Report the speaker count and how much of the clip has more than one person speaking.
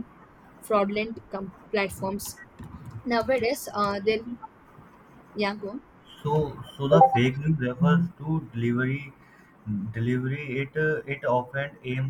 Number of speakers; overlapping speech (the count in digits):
2, no overlap